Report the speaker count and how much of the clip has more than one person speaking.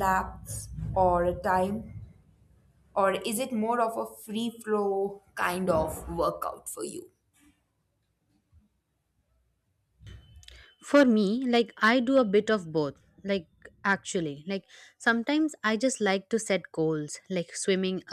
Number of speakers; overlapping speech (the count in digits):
2, no overlap